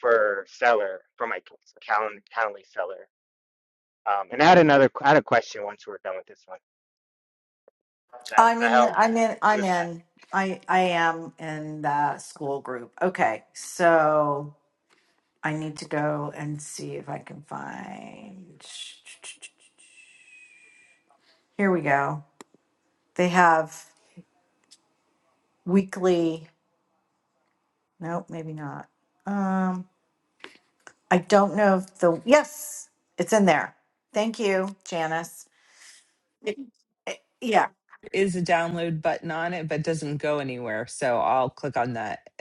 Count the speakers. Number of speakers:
3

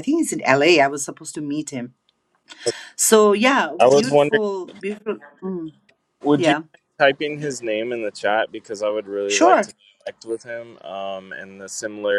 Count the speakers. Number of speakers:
2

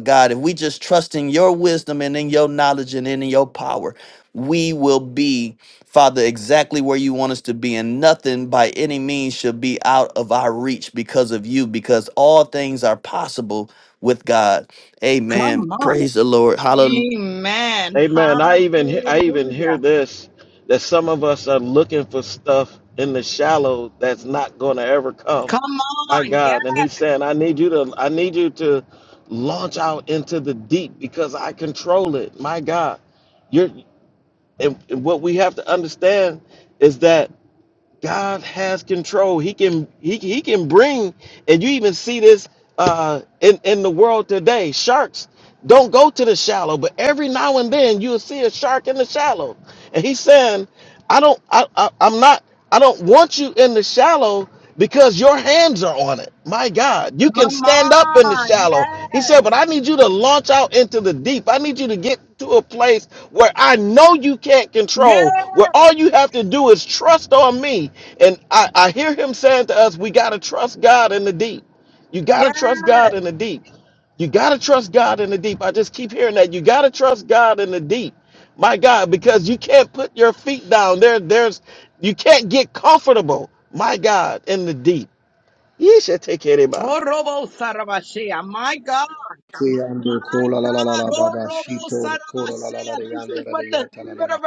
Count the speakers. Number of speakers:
4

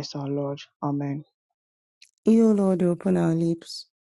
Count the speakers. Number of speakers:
2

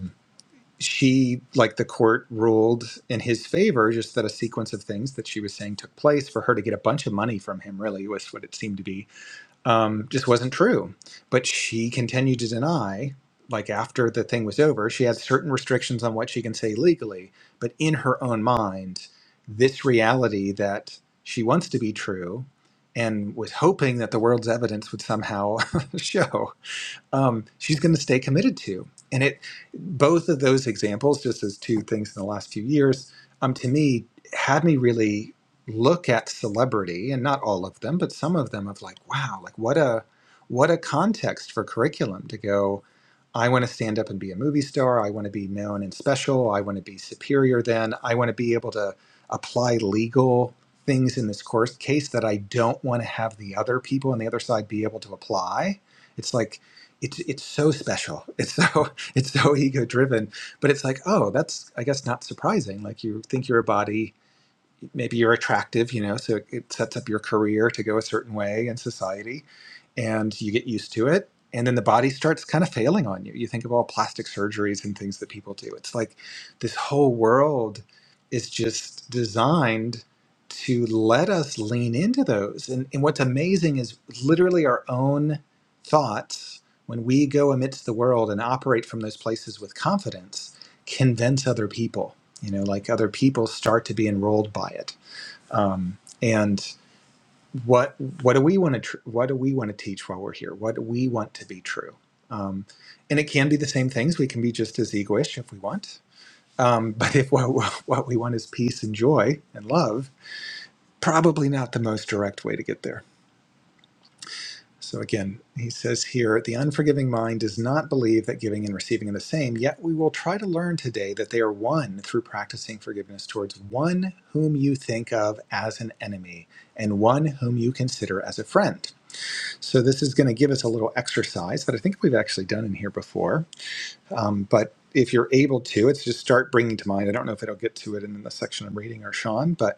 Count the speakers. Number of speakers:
1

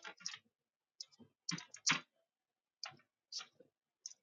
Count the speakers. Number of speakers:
0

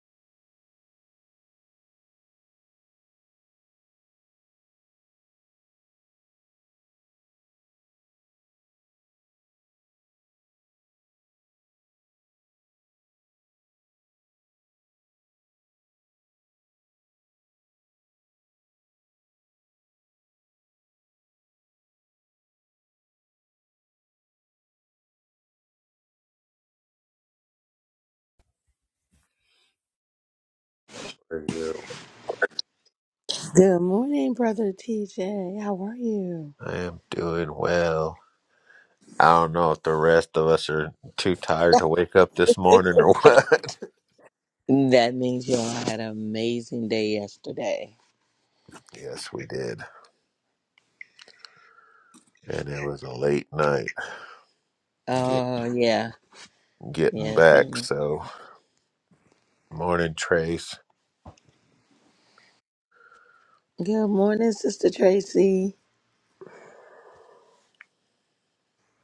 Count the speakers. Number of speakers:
2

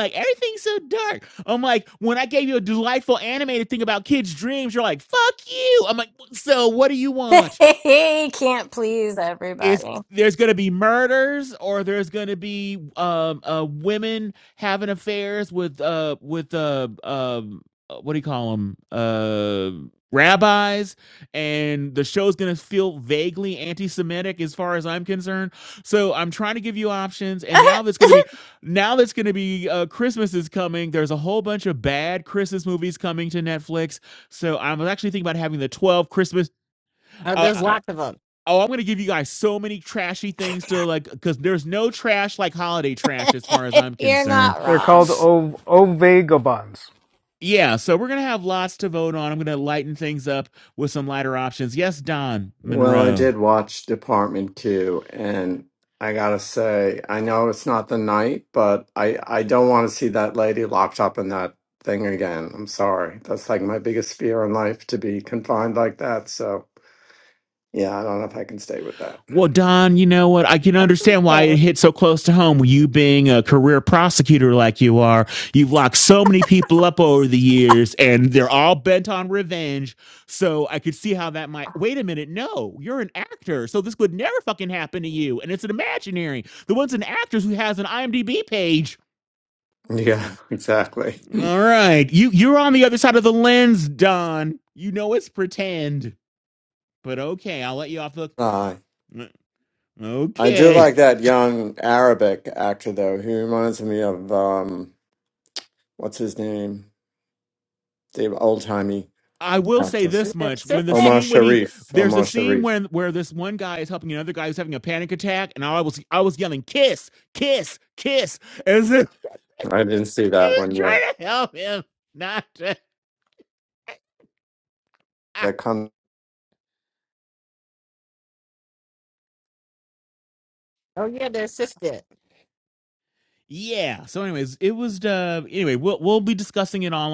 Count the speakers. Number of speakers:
5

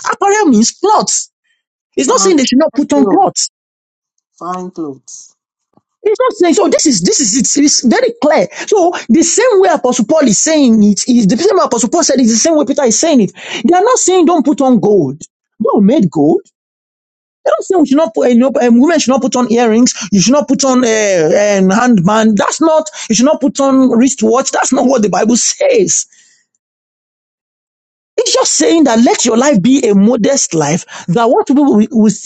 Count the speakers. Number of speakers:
2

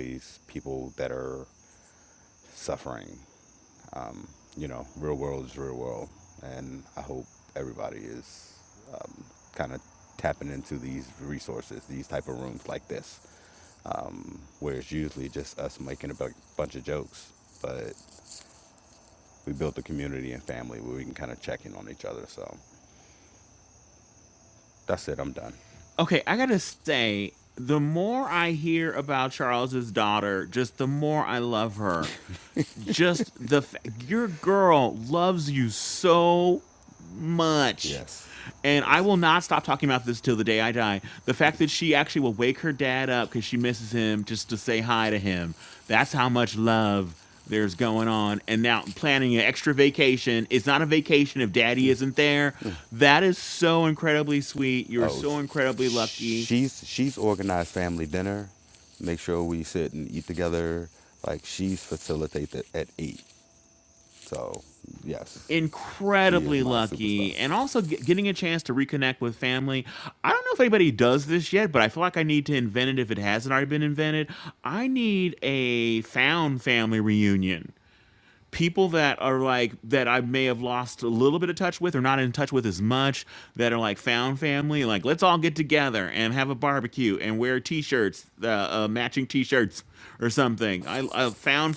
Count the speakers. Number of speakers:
2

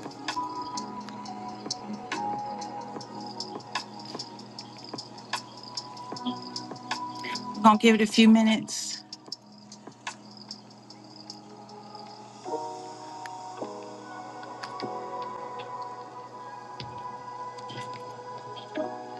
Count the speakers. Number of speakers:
1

